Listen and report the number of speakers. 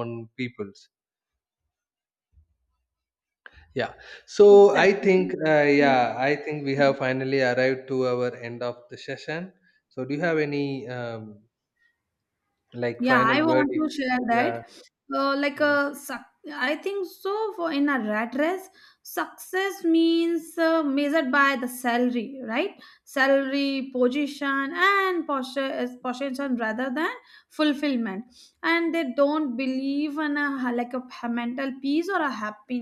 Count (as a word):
two